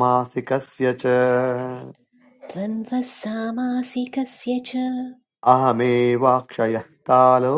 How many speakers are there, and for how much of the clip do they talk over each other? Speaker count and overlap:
two, no overlap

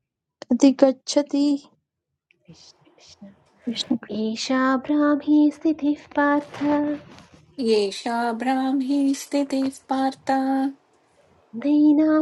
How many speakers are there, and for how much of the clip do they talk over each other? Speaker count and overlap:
three, no overlap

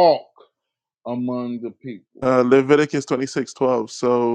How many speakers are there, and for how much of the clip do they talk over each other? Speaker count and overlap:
two, no overlap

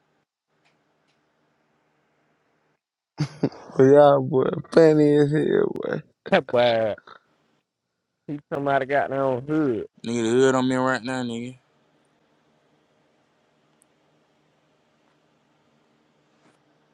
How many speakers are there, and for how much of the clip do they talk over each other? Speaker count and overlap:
three, no overlap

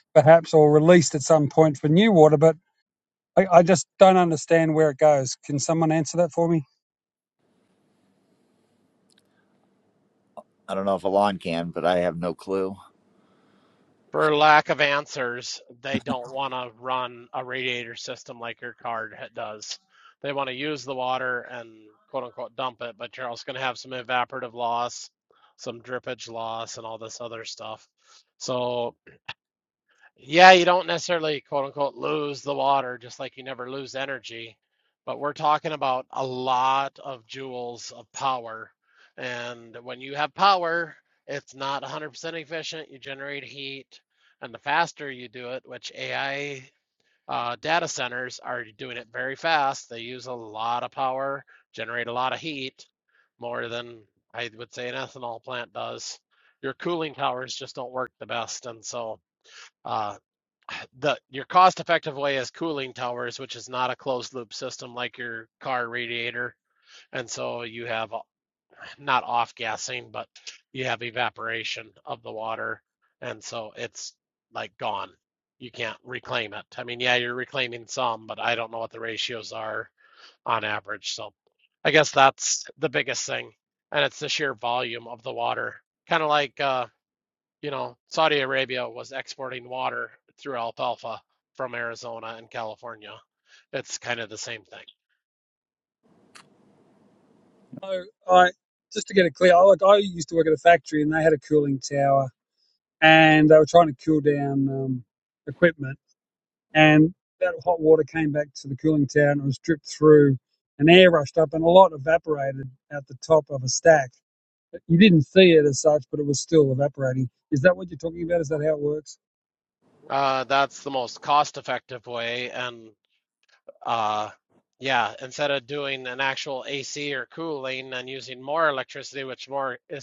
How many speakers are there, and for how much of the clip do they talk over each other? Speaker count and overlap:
three, no overlap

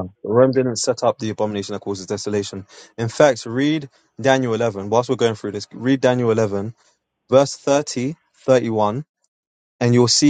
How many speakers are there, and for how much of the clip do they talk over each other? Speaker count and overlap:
one, no overlap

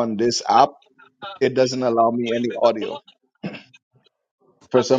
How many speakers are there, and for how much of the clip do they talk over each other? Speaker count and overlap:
one, no overlap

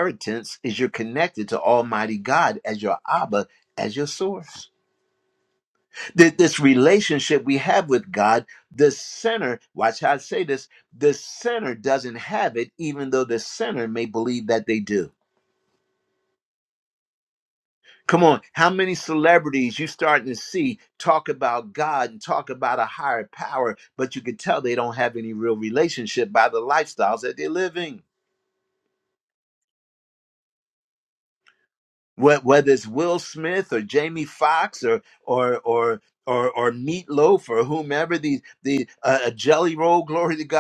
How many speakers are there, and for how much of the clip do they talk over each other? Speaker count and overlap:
one, no overlap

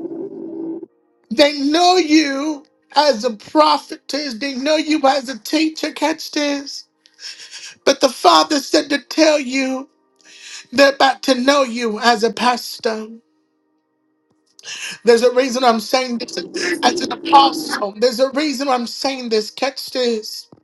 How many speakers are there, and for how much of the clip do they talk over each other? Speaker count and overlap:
one, no overlap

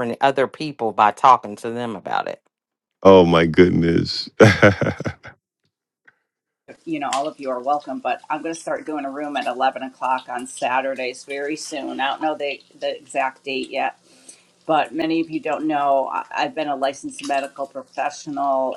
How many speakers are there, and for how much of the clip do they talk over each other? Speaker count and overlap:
three, no overlap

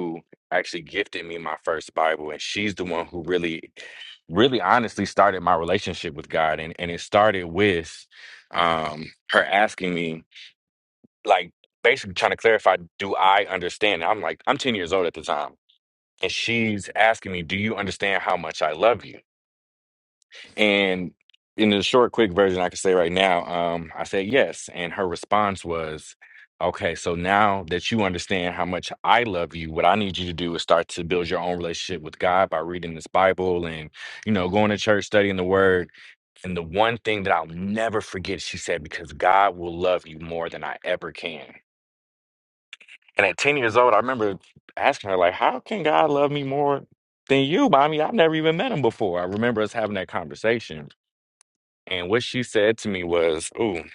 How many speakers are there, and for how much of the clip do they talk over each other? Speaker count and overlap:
one, no overlap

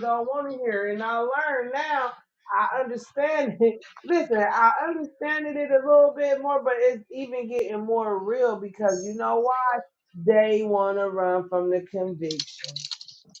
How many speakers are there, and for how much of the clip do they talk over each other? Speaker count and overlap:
one, no overlap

